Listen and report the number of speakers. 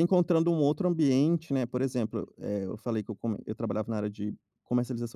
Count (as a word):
one